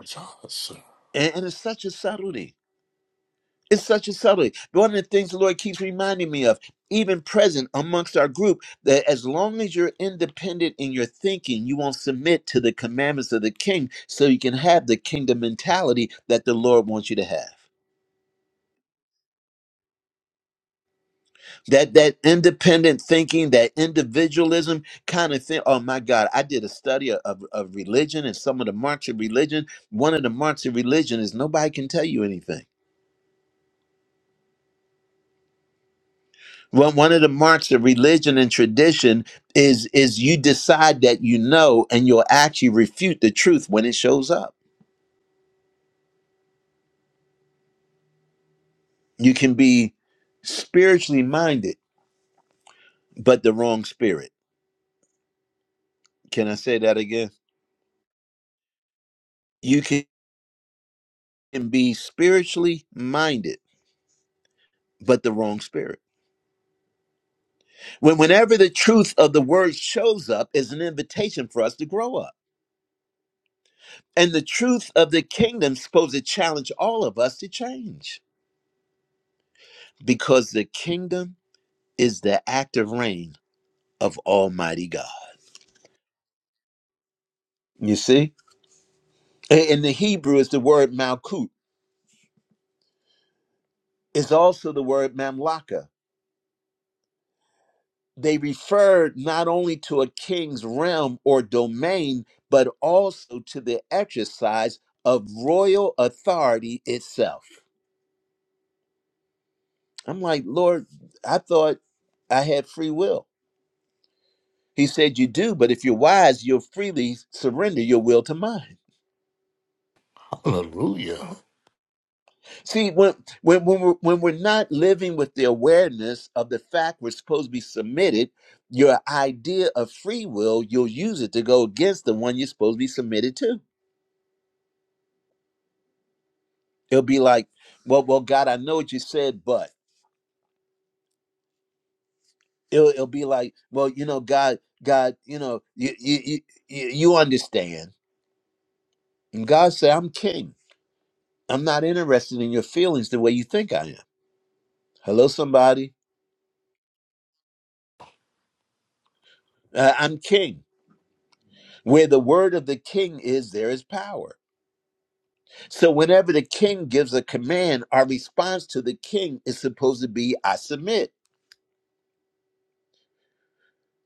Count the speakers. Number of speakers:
2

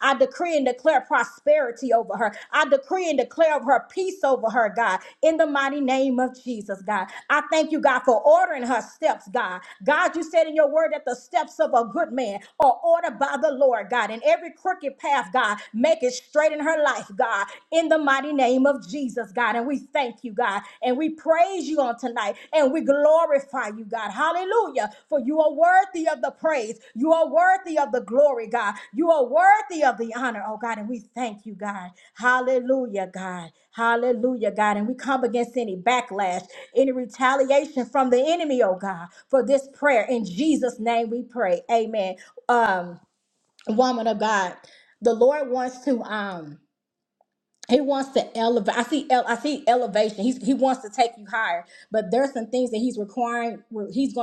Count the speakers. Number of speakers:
1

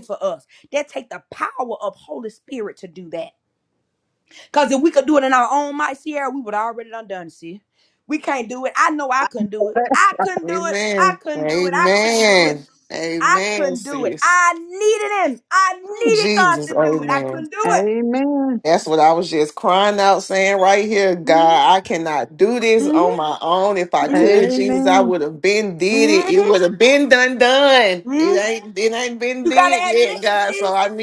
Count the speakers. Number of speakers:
3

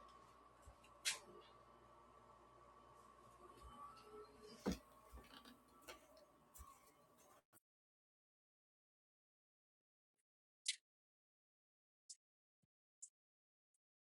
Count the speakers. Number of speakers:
0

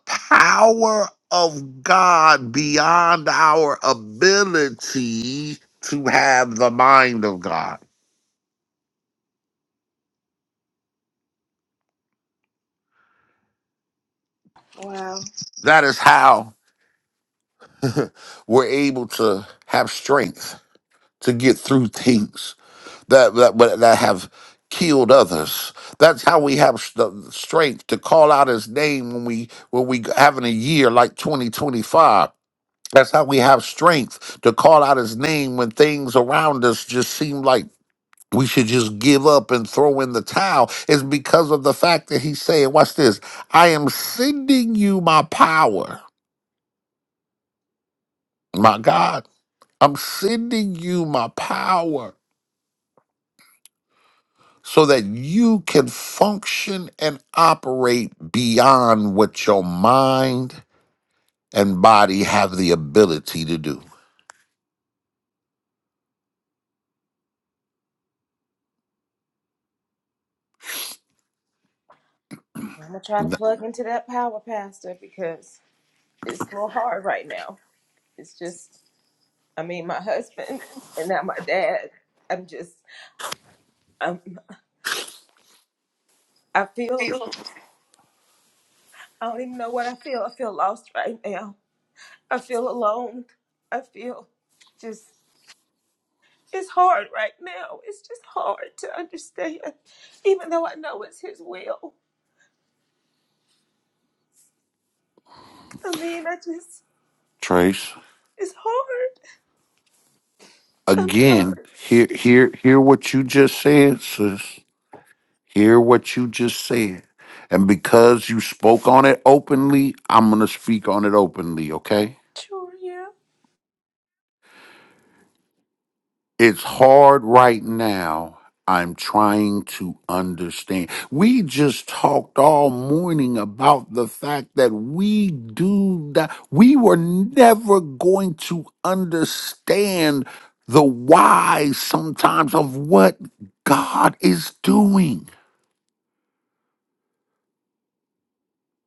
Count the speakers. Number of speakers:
2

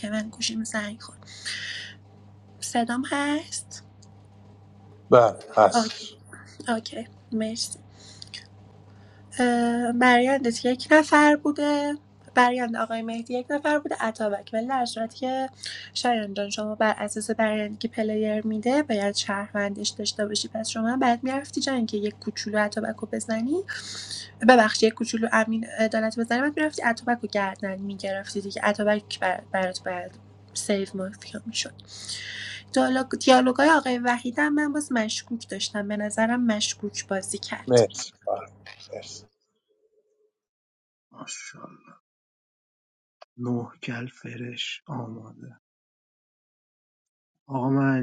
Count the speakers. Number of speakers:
3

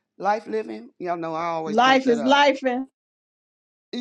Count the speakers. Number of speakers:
2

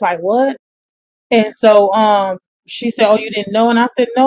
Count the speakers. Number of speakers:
1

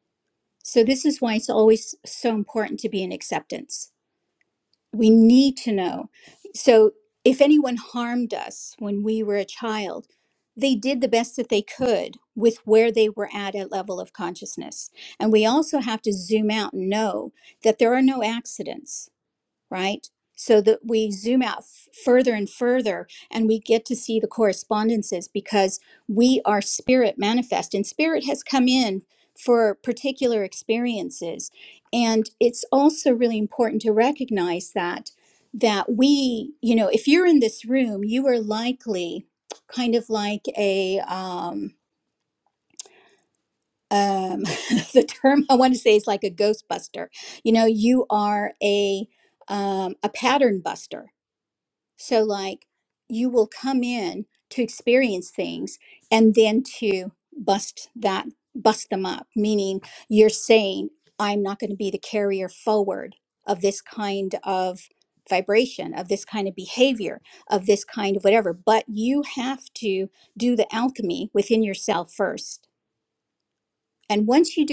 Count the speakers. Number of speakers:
1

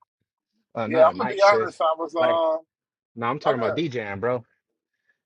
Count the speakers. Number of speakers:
2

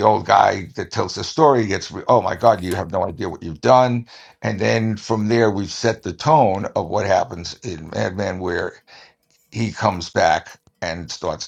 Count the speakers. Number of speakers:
1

